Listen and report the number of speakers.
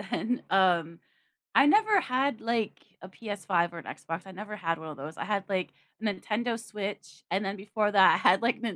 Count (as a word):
one